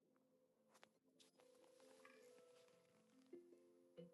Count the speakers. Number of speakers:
zero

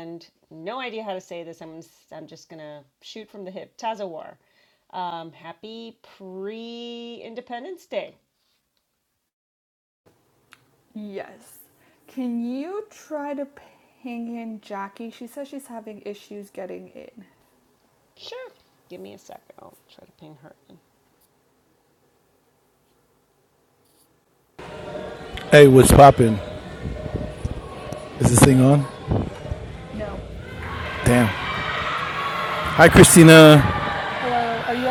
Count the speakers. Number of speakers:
three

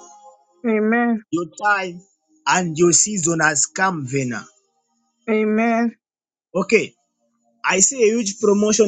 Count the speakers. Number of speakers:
two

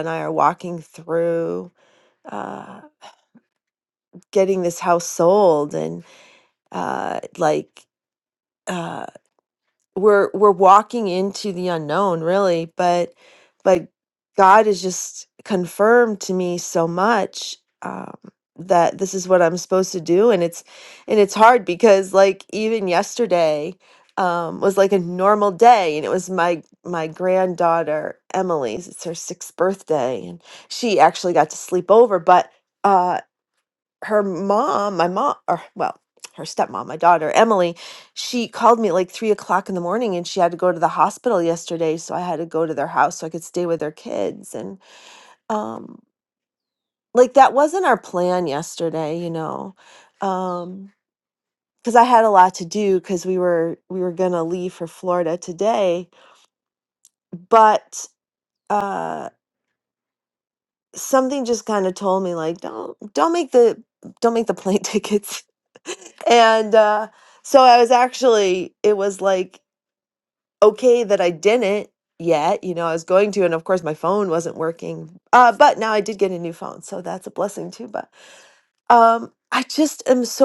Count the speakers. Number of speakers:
one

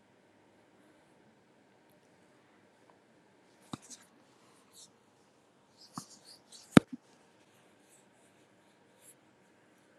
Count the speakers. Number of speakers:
zero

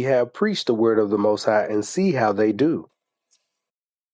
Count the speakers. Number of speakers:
one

